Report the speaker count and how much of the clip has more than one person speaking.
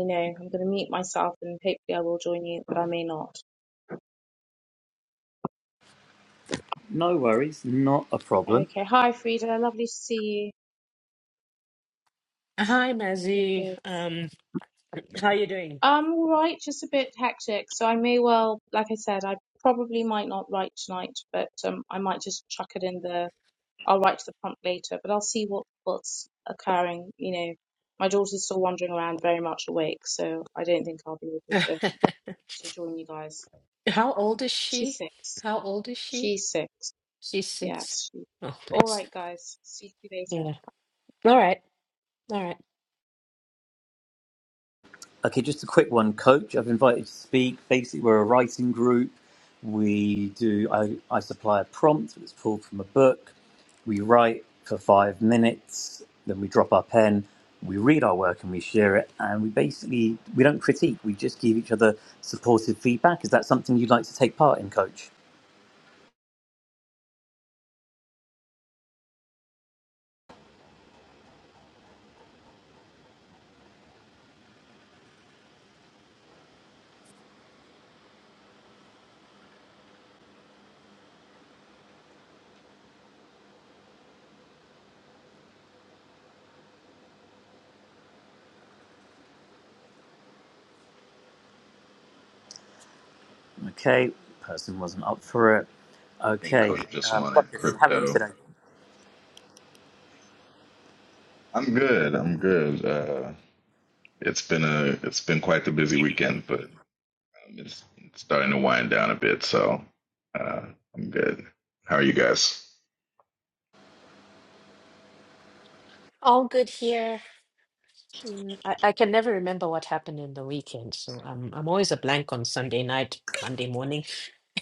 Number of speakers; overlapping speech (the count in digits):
4, about 2%